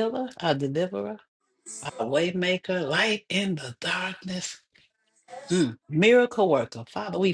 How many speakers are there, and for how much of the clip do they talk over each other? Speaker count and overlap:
1, no overlap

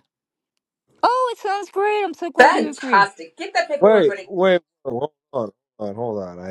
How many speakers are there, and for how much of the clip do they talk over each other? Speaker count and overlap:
3, about 17%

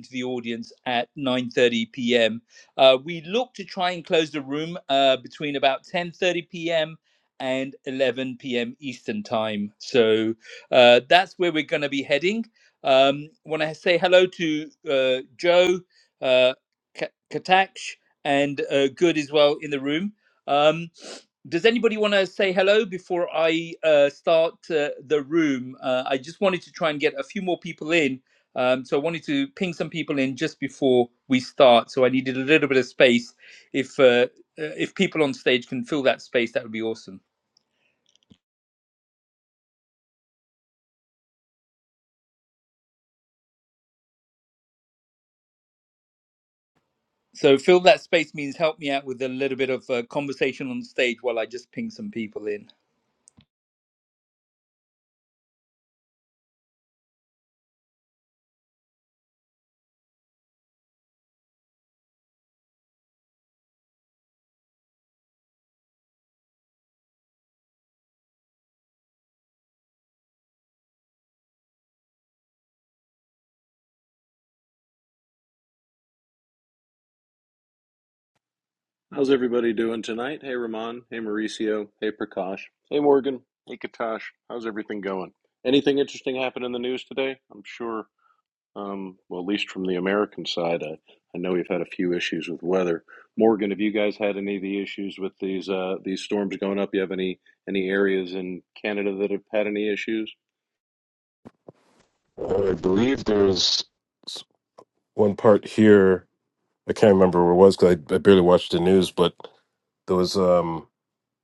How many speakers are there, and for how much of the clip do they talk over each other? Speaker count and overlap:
3, no overlap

